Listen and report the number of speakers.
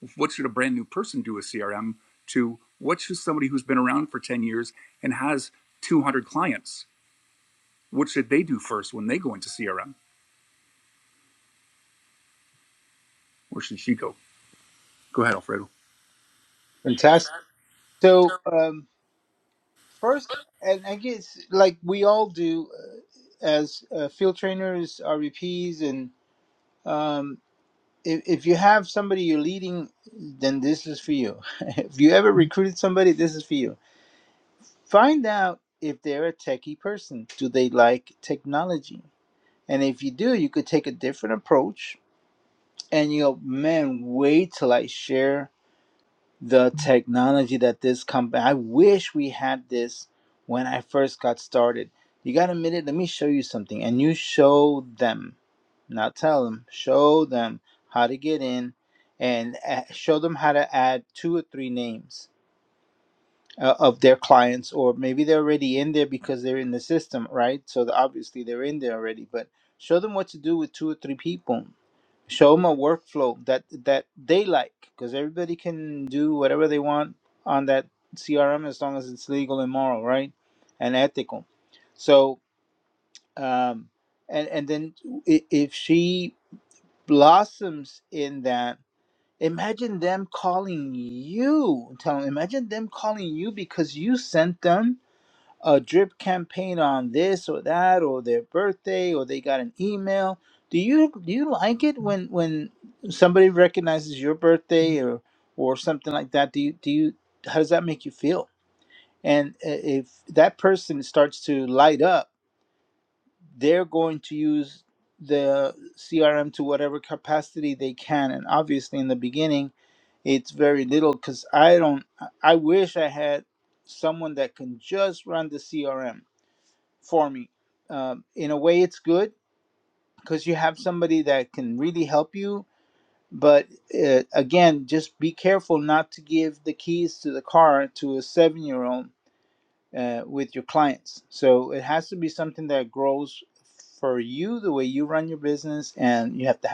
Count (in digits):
2